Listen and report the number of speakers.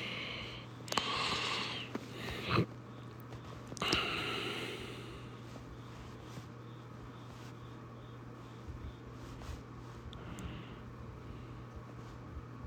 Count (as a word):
zero